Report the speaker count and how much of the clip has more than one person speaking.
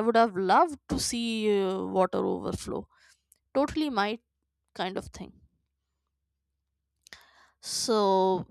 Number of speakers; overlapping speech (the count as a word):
one, no overlap